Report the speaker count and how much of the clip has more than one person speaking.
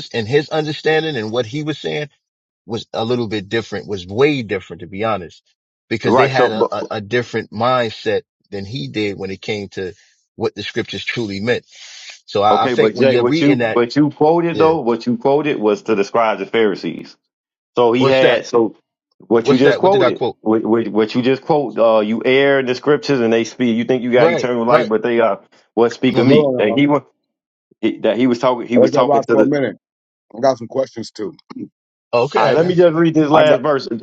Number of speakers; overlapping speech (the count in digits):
3, about 19%